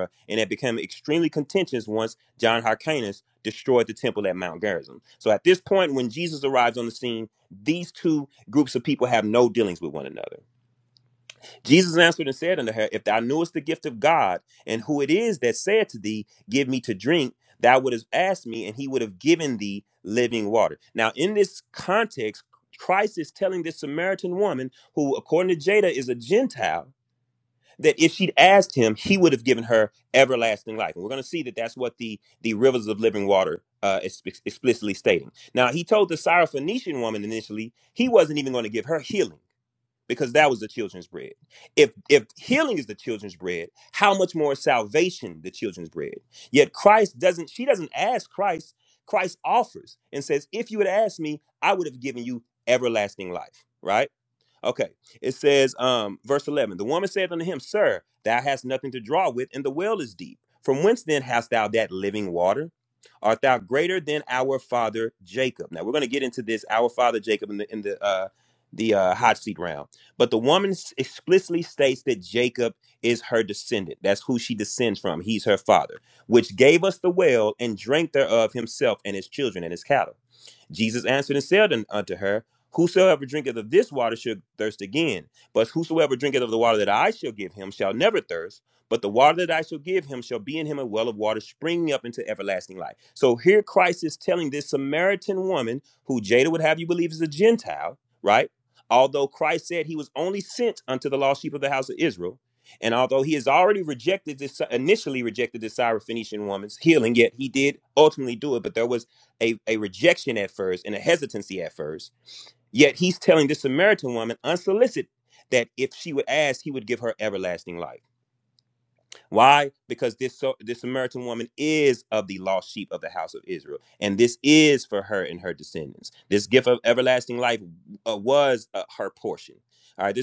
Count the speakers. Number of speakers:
one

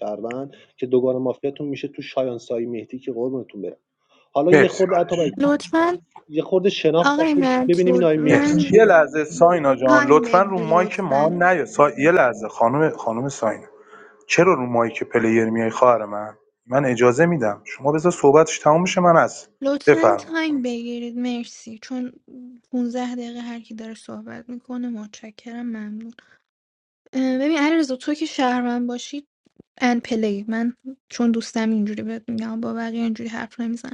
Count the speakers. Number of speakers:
three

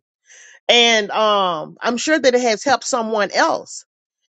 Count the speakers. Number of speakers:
one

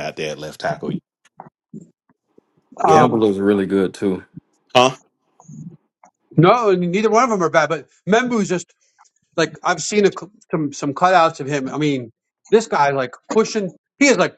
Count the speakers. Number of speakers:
three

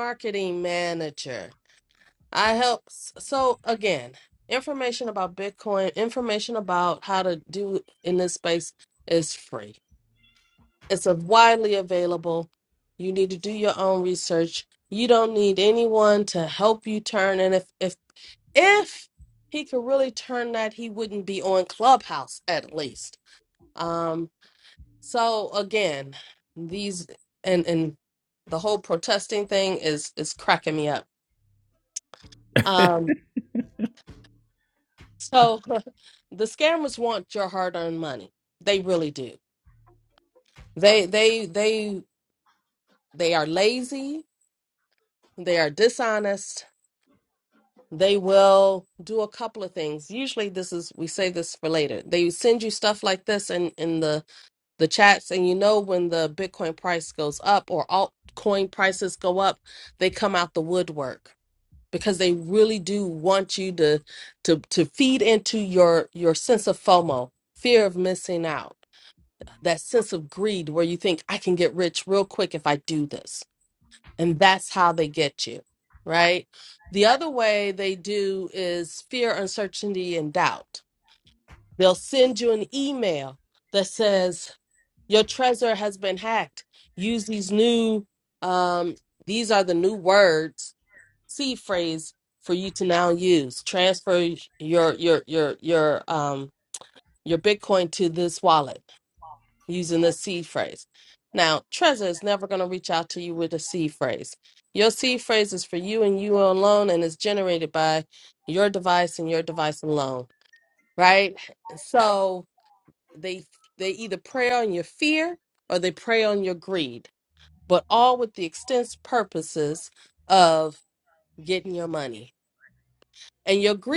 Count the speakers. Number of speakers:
one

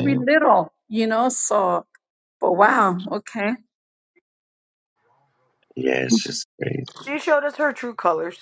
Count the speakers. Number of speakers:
three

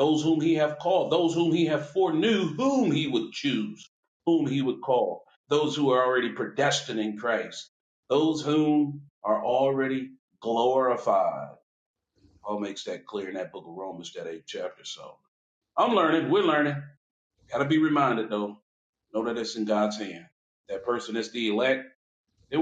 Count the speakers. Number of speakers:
one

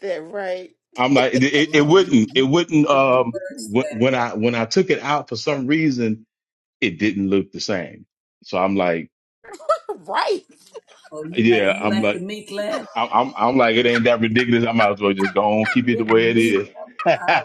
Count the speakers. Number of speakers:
three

